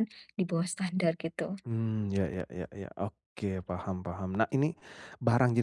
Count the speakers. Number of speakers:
two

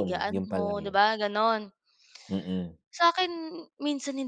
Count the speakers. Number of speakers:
two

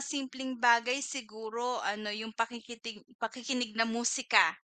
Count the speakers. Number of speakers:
one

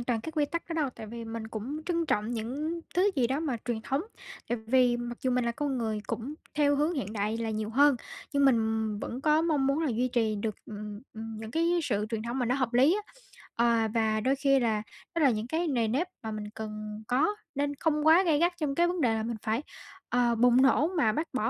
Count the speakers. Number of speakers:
one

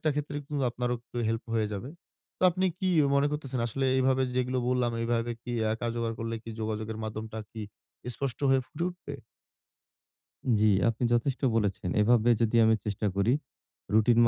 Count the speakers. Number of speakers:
two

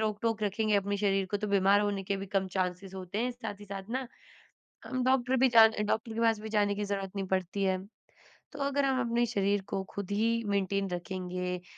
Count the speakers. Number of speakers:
one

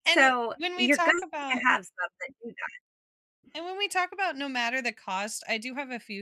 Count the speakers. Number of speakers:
two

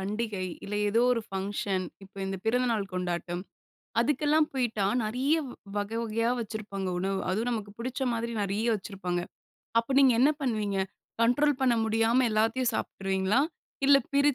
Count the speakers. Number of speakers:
one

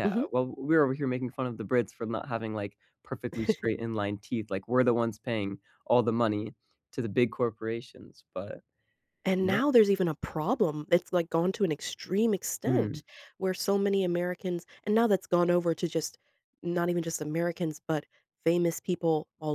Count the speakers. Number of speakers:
two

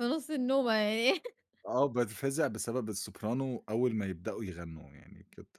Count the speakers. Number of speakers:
two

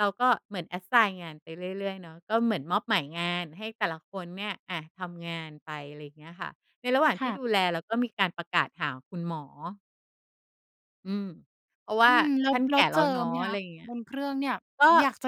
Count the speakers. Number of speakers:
two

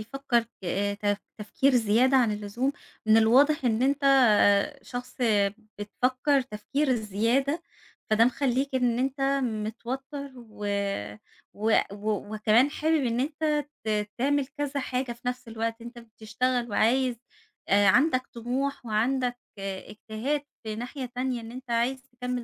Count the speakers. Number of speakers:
one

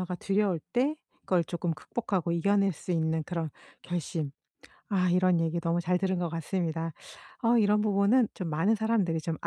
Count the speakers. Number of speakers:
one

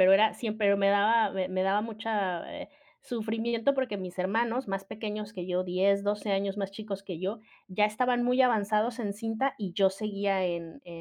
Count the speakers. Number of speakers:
one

